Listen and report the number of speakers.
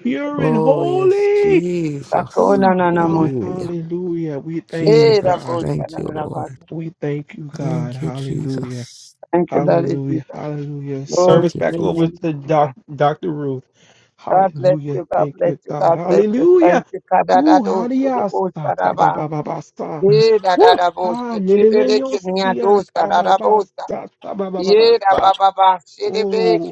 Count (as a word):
three